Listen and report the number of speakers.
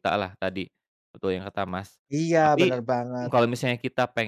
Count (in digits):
2